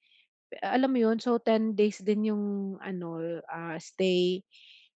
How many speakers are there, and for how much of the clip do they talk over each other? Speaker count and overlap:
one, no overlap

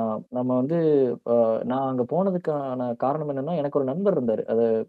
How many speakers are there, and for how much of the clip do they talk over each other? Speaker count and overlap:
one, no overlap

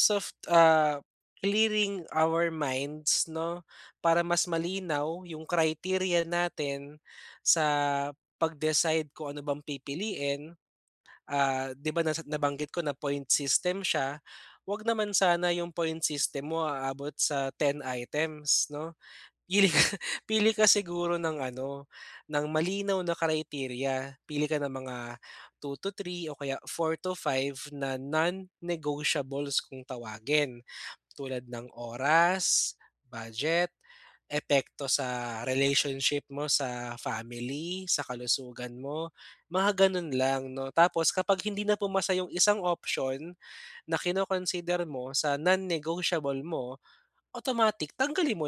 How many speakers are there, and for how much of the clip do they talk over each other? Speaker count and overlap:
one, no overlap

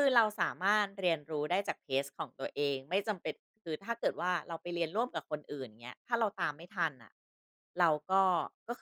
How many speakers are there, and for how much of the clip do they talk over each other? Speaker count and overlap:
one, no overlap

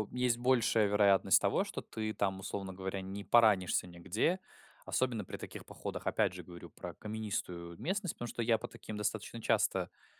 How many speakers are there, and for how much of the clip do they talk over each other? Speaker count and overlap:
one, no overlap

